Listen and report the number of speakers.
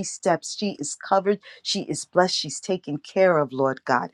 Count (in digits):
1